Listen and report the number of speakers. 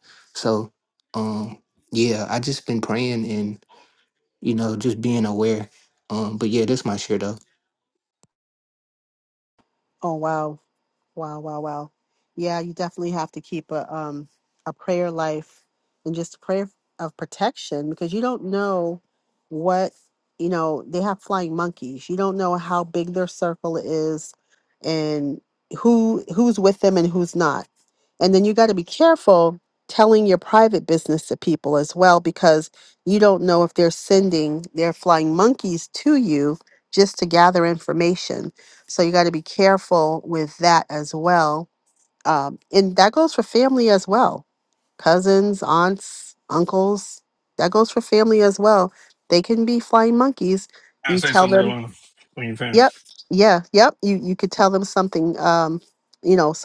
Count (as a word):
three